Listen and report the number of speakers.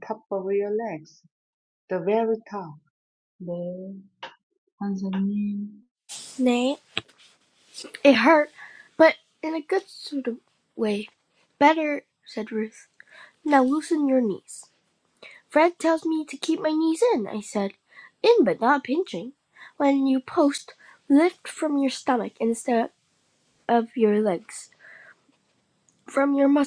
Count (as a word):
two